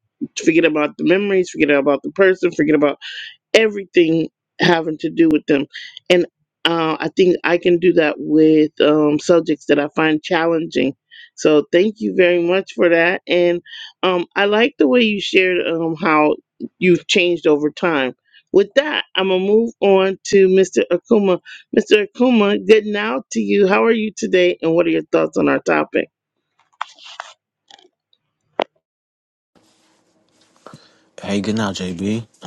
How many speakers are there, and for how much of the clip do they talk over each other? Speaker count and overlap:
2, no overlap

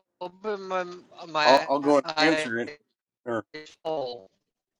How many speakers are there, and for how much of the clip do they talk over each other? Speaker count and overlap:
2, about 15%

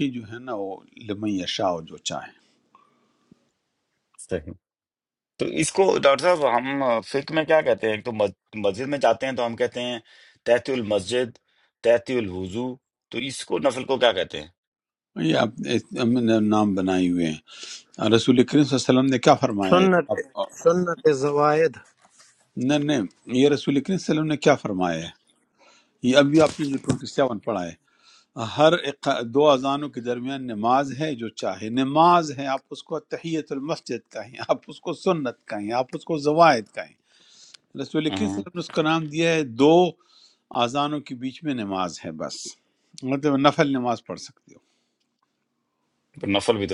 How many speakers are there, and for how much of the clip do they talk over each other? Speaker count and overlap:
3, about 2%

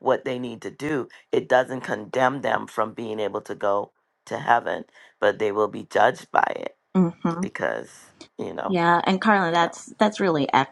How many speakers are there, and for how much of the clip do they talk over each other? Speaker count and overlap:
2, about 3%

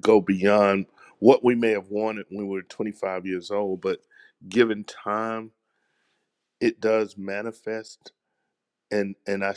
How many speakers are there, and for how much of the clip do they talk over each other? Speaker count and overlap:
1, no overlap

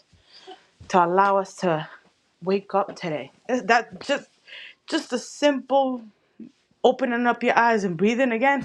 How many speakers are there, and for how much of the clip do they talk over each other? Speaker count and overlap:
1, no overlap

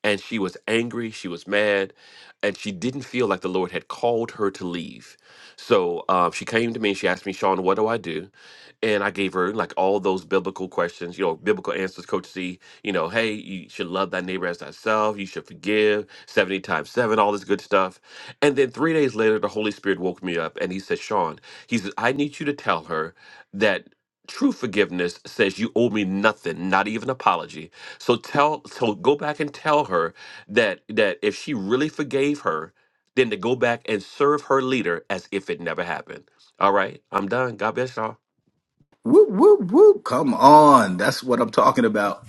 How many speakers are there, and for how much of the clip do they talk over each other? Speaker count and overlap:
2, no overlap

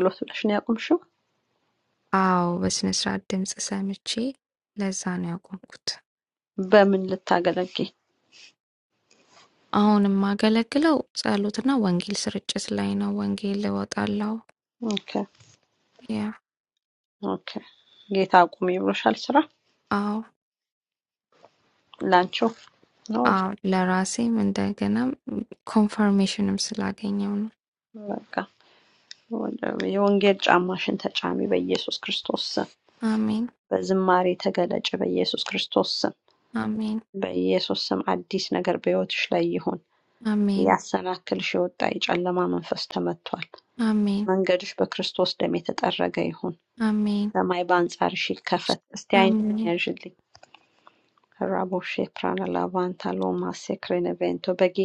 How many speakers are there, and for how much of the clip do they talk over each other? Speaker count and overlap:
2, about 2%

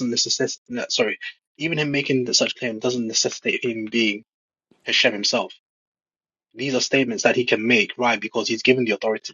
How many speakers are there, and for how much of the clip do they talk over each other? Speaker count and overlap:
1, no overlap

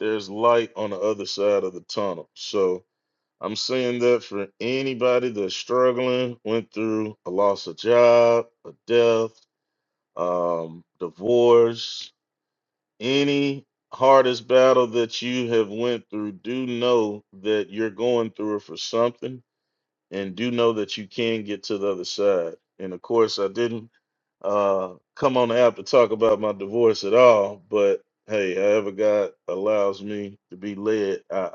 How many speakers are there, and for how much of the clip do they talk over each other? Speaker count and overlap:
1, no overlap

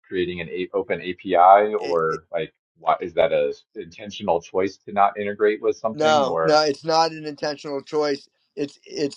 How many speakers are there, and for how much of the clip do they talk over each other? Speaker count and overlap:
2, about 5%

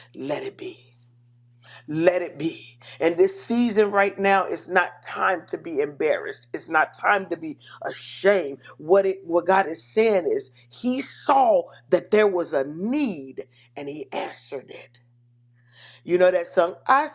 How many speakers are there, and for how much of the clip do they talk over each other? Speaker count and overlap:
1, no overlap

